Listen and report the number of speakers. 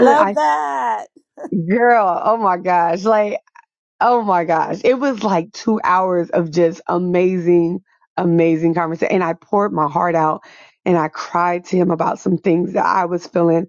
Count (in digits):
2